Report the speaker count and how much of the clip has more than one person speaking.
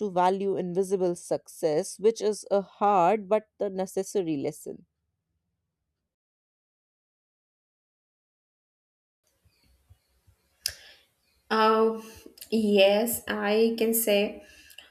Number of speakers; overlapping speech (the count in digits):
2, no overlap